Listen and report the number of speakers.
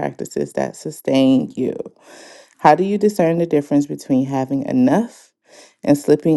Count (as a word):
one